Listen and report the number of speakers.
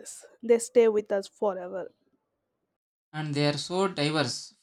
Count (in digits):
2